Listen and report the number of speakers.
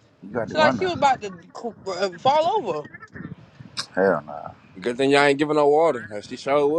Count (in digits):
3